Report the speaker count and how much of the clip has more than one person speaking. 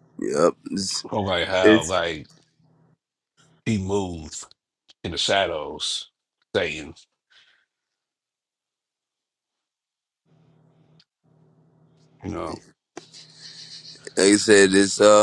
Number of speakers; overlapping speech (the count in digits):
2, about 1%